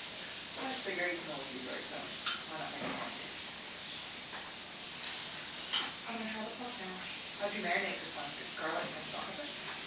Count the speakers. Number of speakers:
one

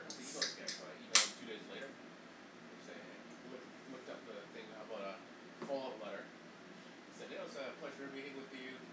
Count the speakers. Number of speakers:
one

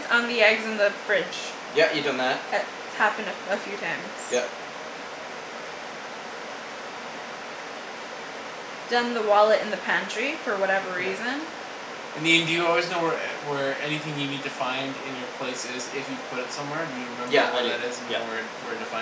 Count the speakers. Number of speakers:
three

